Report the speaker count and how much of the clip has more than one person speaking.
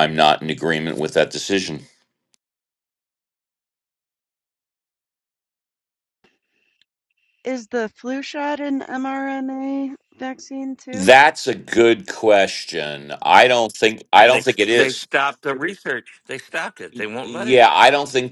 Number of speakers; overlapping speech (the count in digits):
3, about 9%